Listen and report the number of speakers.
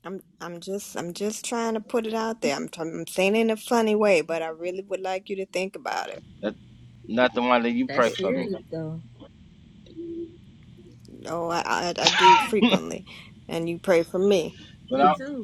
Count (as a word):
three